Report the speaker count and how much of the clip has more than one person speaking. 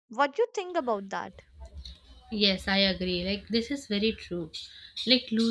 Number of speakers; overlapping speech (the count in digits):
2, no overlap